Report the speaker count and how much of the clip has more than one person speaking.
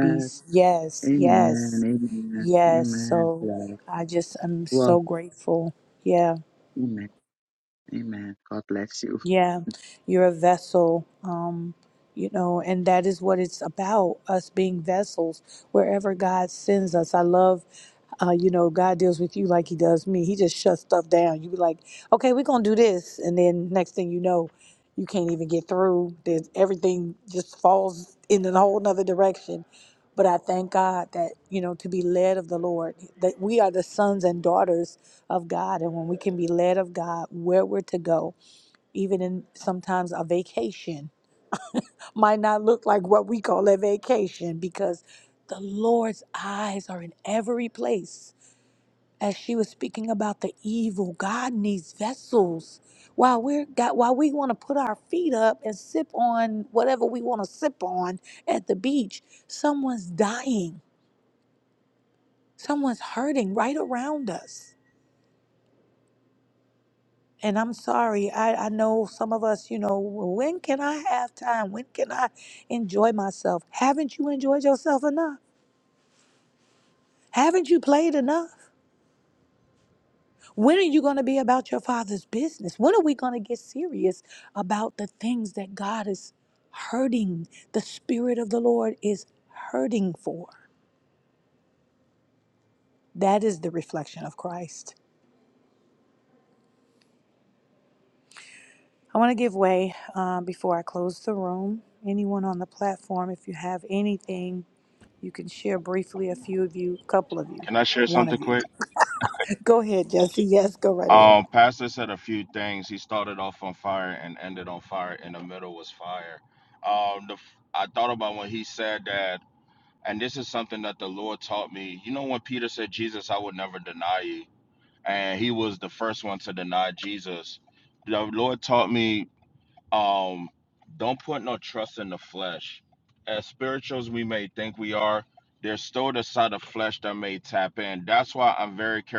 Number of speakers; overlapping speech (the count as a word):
three, about 2%